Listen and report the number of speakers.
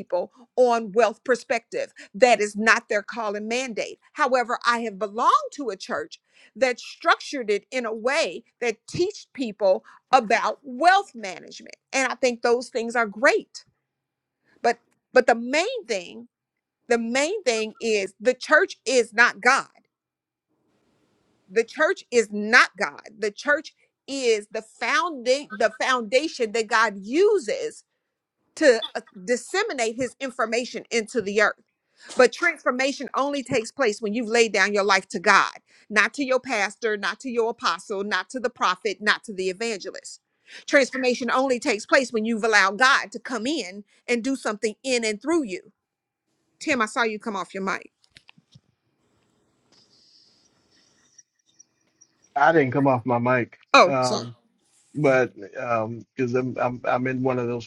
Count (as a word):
two